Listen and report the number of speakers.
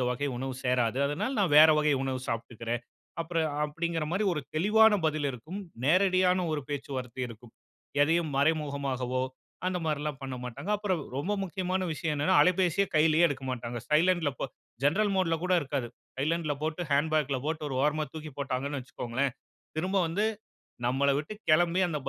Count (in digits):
1